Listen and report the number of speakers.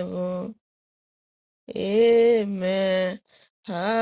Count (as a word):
one